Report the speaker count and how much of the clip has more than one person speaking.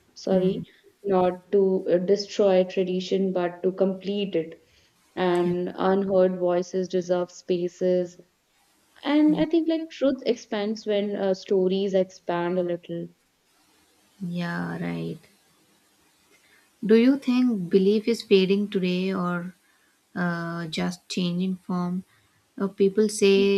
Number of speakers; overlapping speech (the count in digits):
2, about 3%